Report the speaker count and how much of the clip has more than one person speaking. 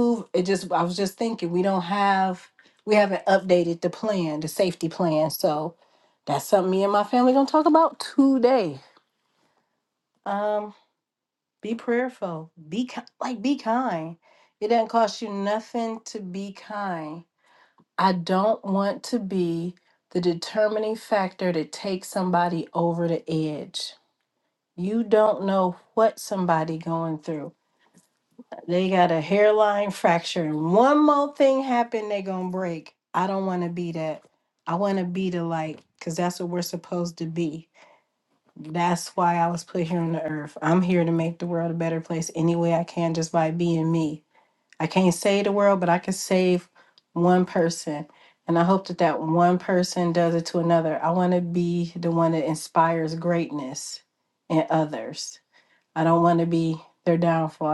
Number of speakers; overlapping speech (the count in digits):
1, no overlap